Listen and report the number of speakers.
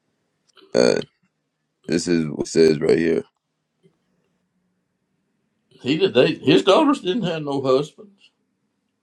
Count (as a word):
two